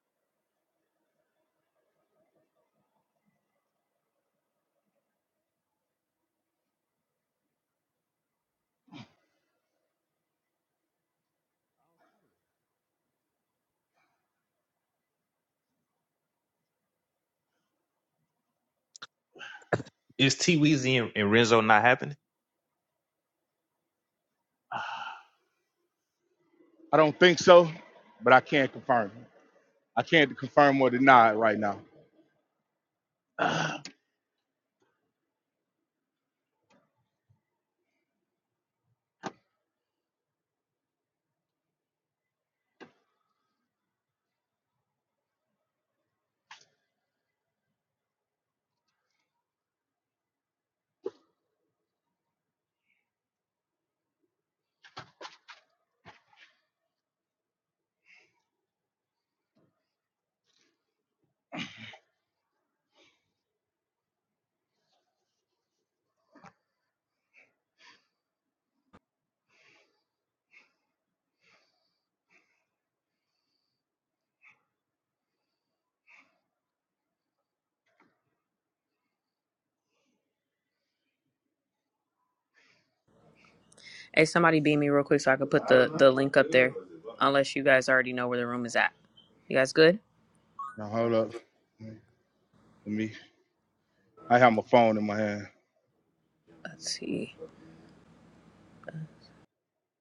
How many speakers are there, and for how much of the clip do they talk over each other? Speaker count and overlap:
three, no overlap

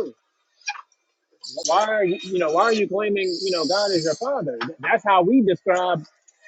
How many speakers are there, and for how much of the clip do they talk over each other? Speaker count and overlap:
one, no overlap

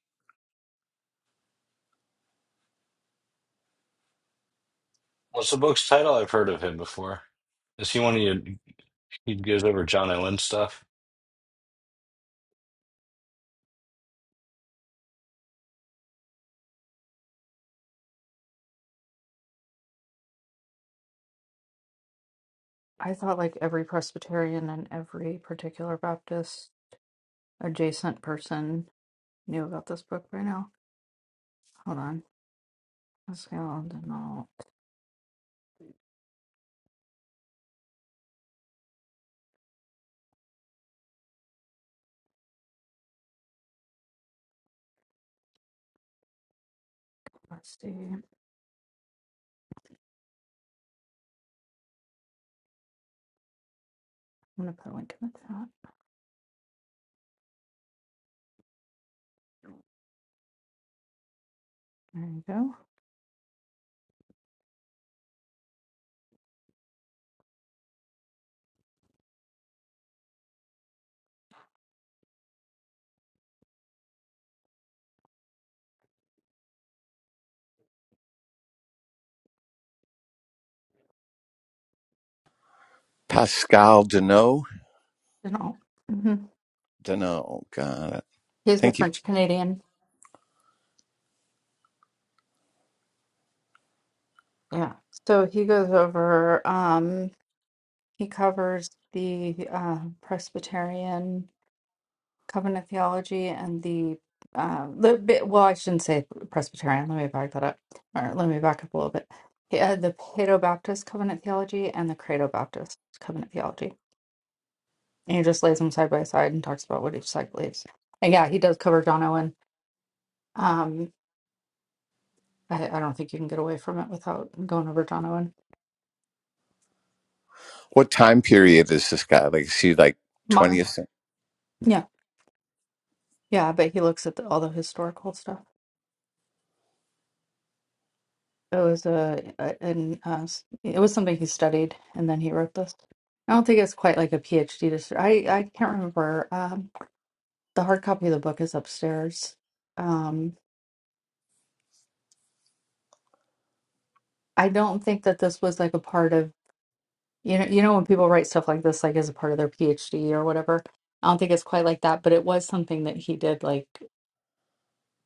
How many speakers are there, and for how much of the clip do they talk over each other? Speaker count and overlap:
three, under 1%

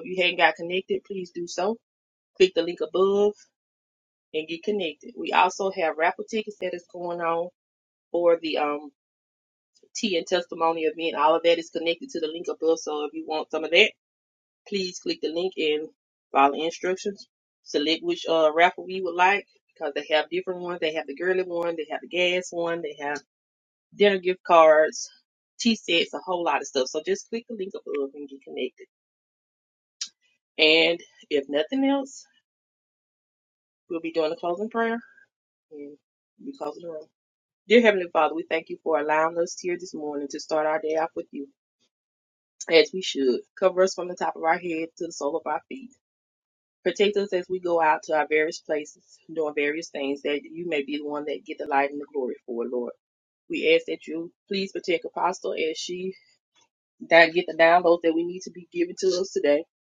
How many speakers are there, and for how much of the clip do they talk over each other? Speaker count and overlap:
one, no overlap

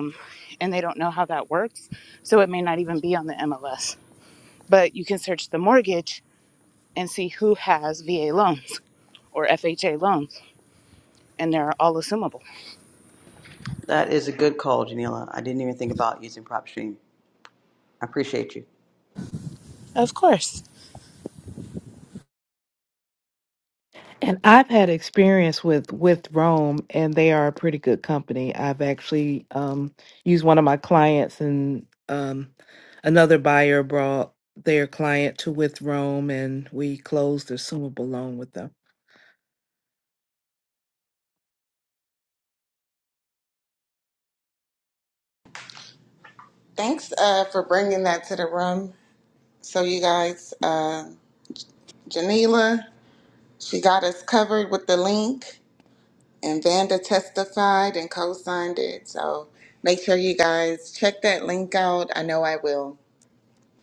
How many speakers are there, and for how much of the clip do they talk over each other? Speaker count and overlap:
four, no overlap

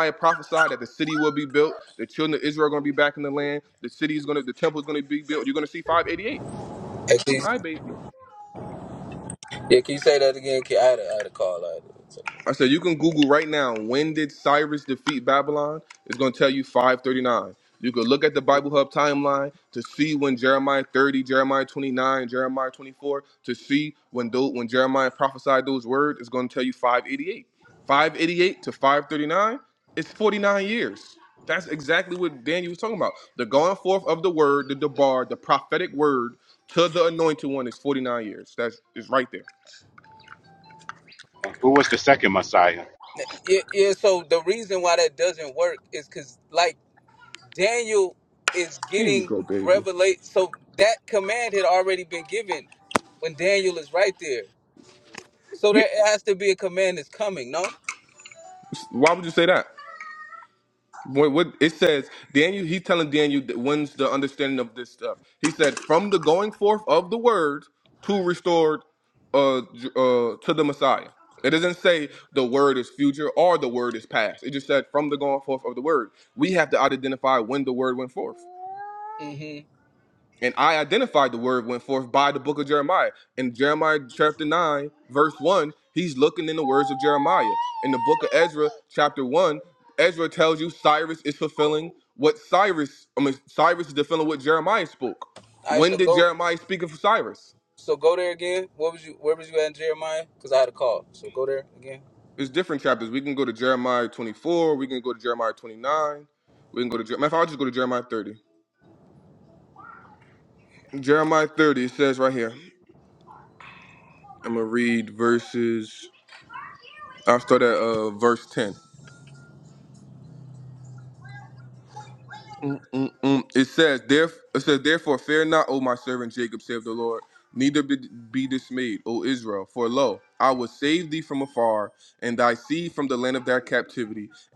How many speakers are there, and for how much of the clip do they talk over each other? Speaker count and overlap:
three, about 1%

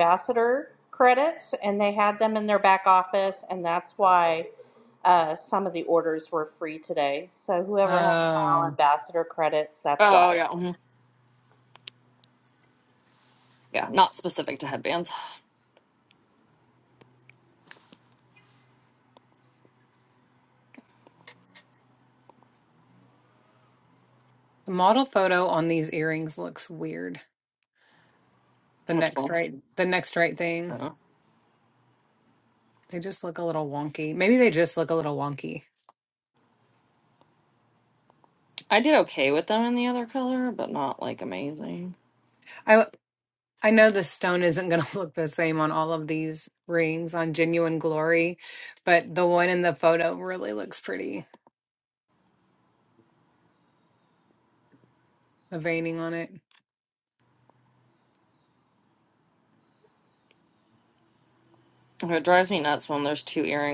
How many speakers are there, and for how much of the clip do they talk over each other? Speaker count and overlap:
three, about 3%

